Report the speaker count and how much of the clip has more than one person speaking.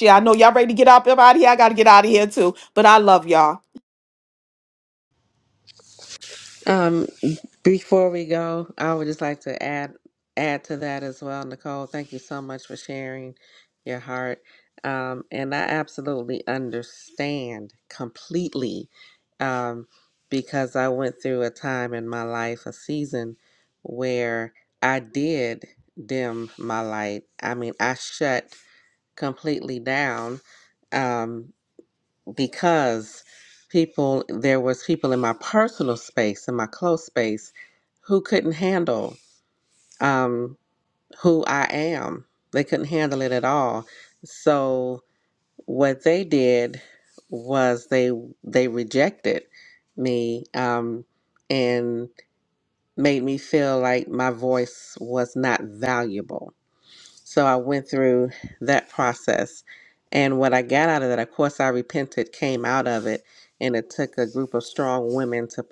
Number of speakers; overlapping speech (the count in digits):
2, no overlap